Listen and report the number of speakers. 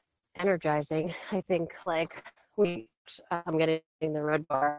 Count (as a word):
one